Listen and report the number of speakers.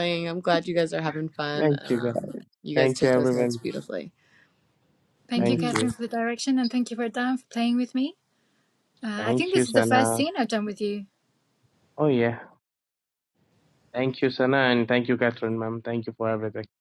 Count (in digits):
3